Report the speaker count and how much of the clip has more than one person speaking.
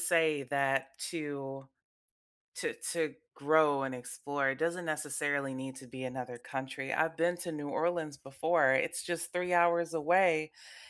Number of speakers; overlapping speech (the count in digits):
1, no overlap